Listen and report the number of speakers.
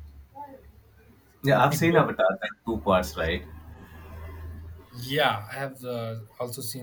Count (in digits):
2